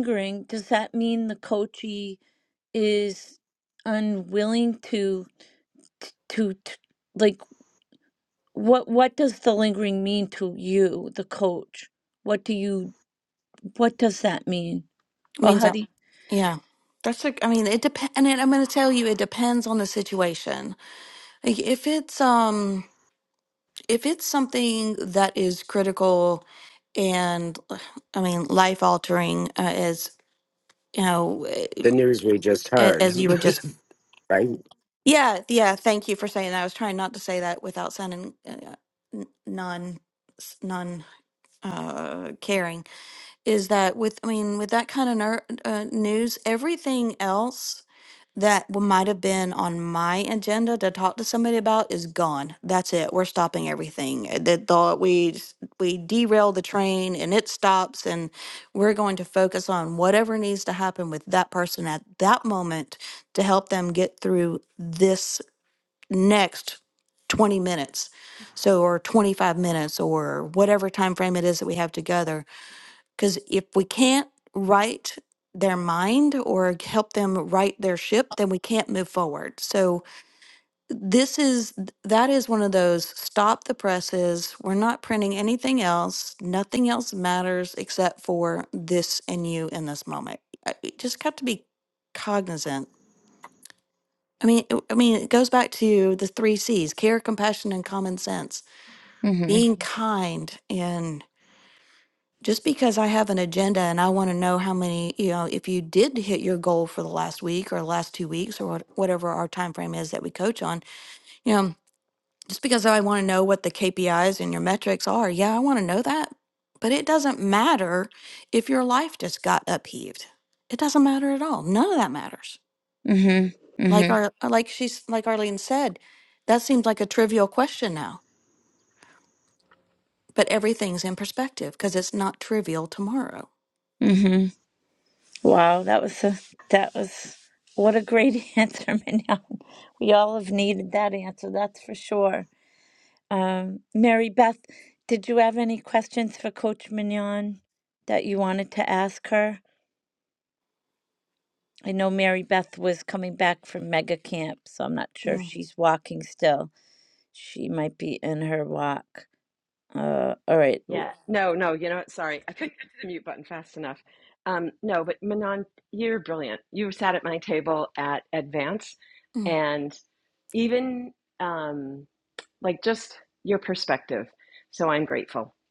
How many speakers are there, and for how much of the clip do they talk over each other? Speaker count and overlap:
4, about 1%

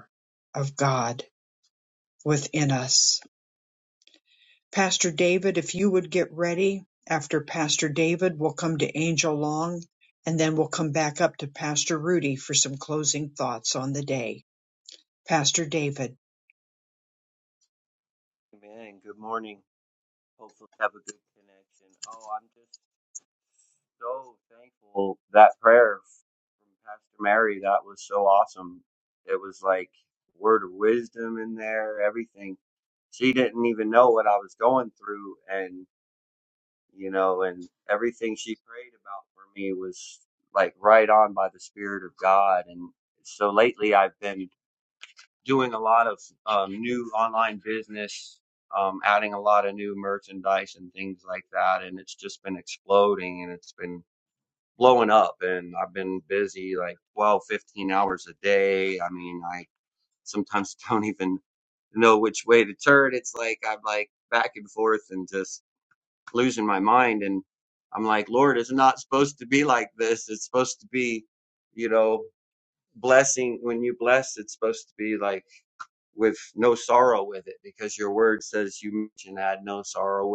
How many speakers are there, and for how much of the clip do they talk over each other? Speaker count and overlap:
2, no overlap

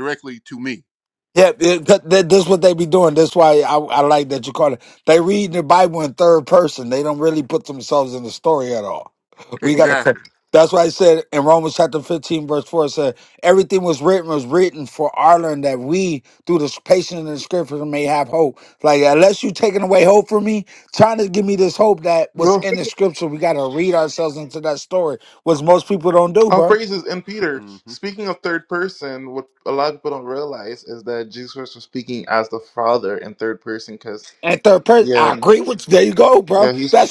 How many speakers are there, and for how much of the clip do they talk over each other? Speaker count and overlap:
3, about 6%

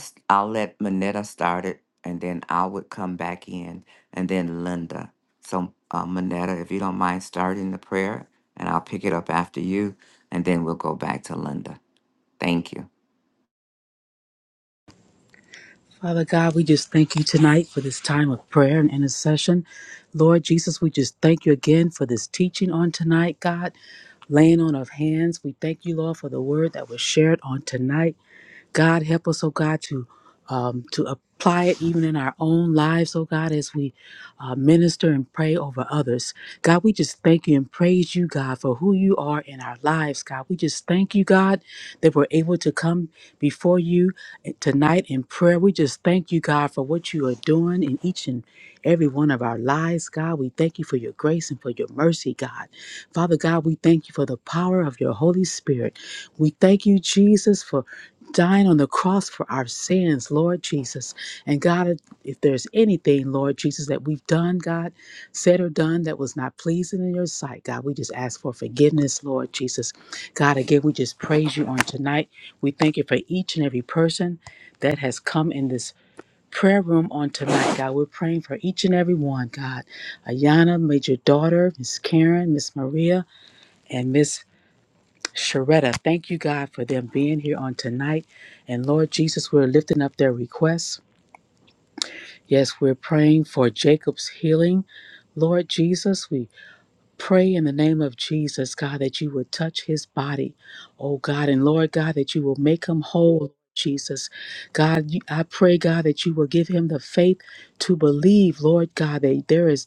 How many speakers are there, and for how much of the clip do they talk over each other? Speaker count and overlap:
2, no overlap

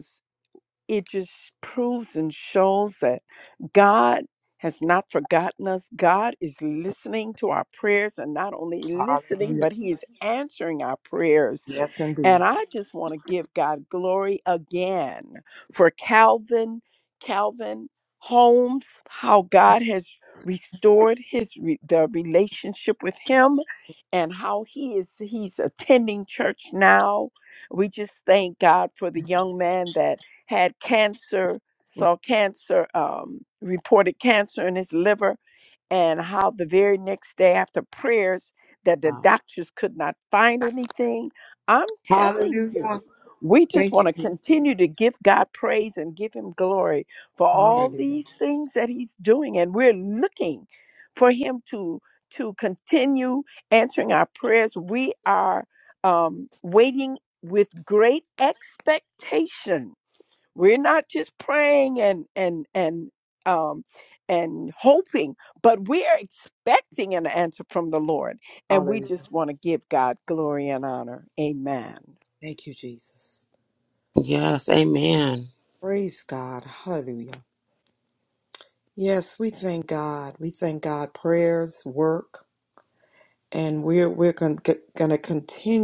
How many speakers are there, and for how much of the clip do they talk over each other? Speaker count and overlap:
3, about 4%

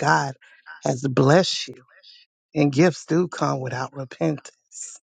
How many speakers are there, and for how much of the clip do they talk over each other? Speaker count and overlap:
1, no overlap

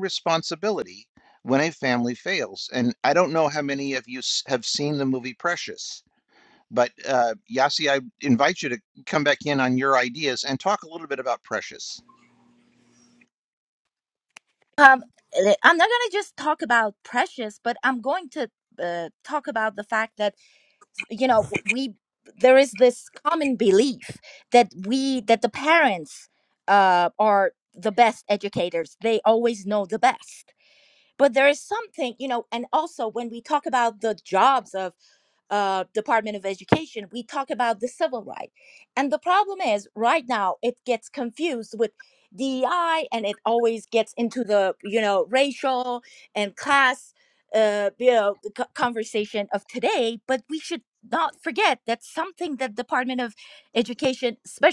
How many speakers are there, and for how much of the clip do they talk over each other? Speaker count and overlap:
2, no overlap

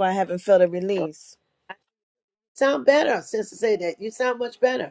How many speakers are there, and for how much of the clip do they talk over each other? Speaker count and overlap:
2, about 2%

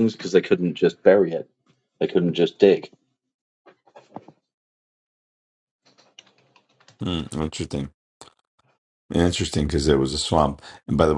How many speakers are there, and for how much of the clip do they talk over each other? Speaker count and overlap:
2, no overlap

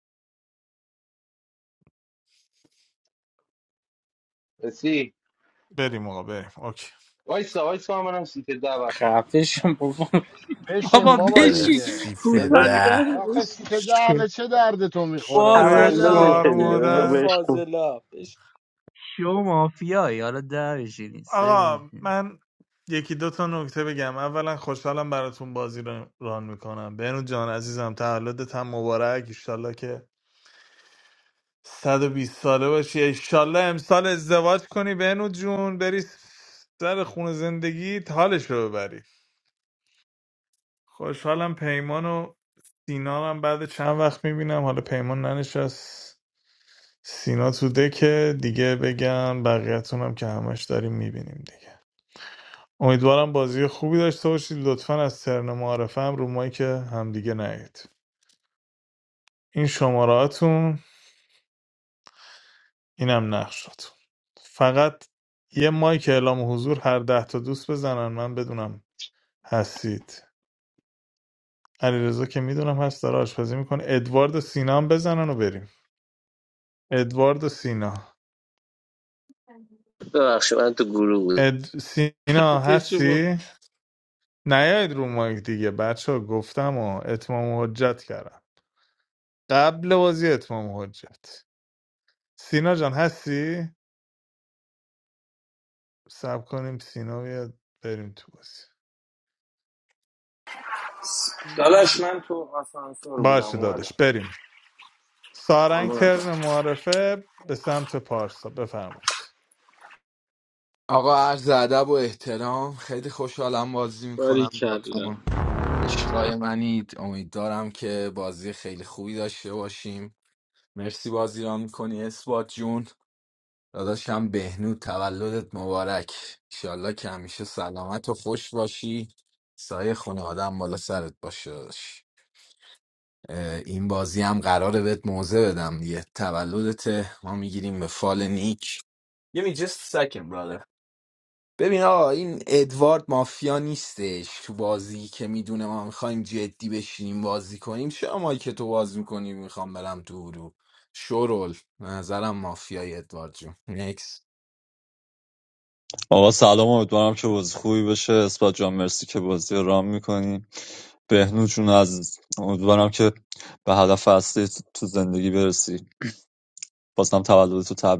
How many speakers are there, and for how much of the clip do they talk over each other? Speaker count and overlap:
9, about 6%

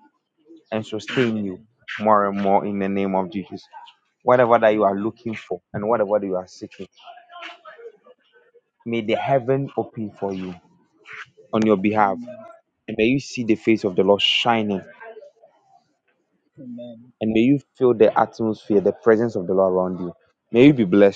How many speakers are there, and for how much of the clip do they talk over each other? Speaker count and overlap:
2, about 5%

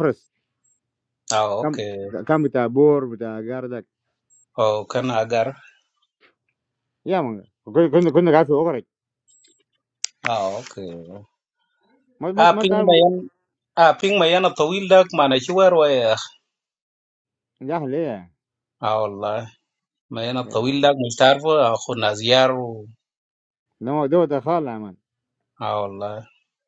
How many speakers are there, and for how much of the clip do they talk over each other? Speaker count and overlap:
2, about 3%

